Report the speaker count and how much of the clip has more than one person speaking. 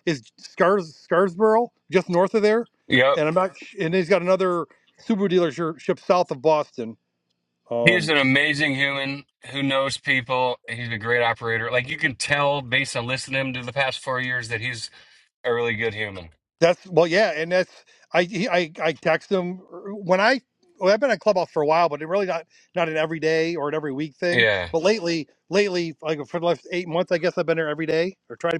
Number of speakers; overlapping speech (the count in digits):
2, about 2%